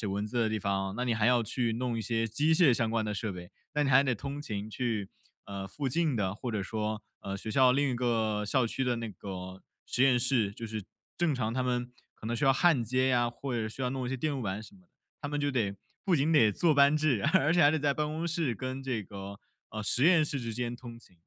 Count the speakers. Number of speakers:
1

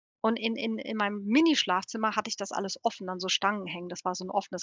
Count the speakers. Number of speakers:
1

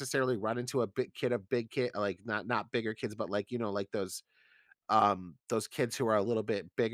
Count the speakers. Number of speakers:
1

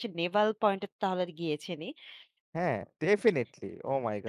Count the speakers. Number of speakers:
2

